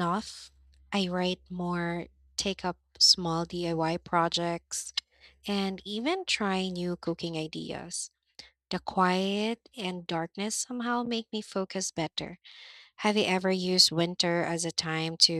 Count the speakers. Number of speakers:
one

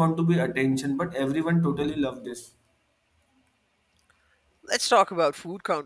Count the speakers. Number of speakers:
two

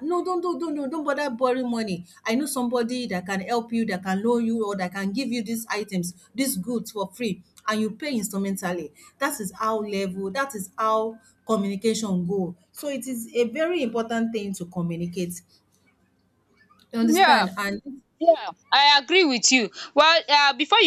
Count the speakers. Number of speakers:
two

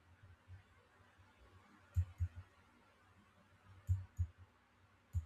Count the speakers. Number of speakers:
zero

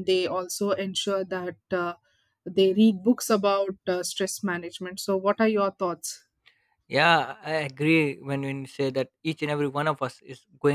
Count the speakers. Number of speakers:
two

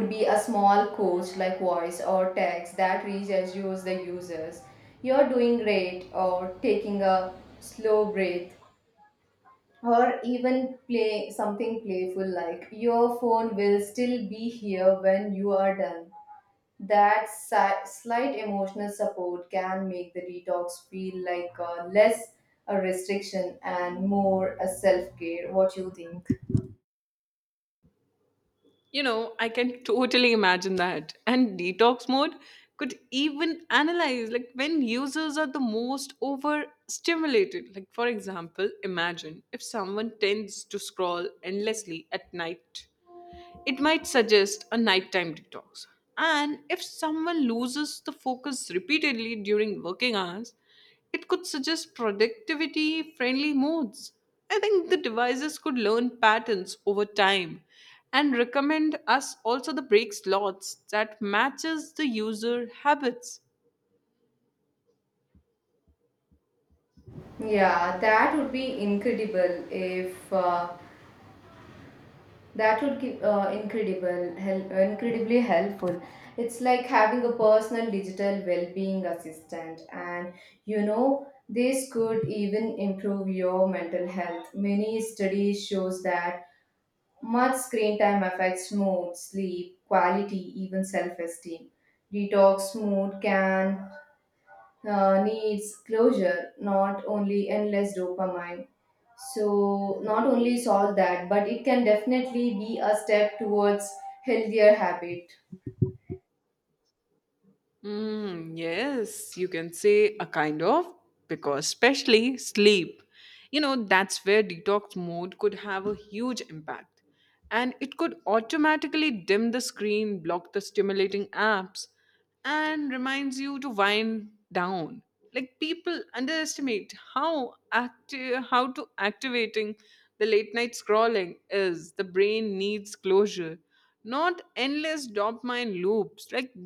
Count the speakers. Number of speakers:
two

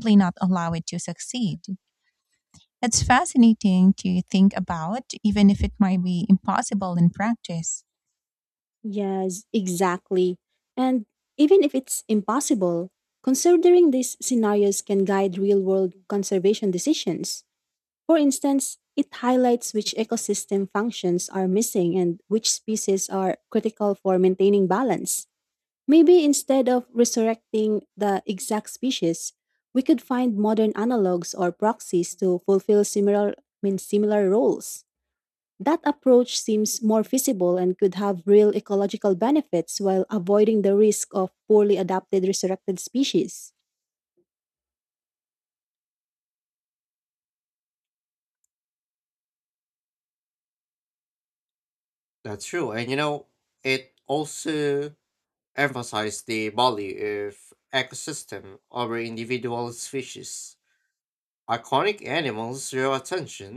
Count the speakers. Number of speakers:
three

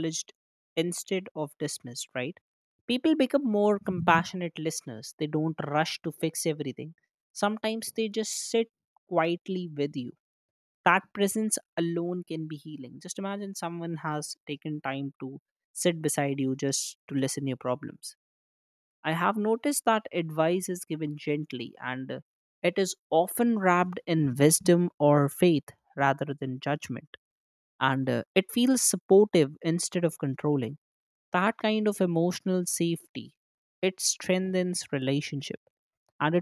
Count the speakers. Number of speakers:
one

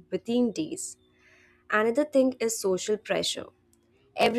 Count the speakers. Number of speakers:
one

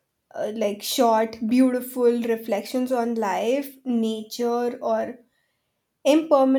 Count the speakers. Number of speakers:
one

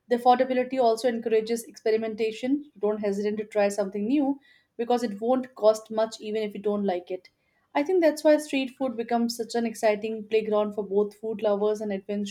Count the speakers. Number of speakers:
one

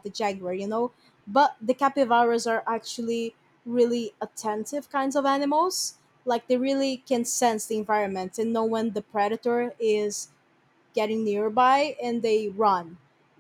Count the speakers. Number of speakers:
one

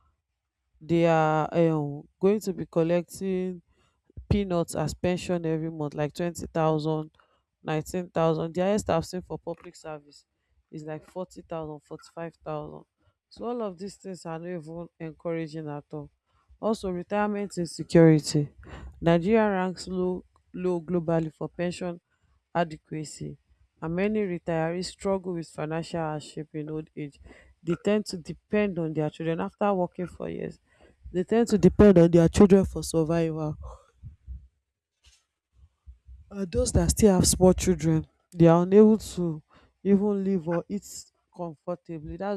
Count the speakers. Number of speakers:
one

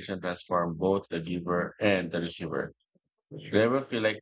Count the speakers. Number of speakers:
one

